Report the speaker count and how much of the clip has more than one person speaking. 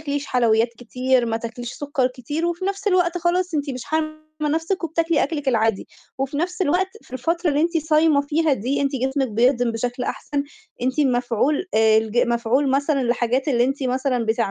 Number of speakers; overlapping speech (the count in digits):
1, no overlap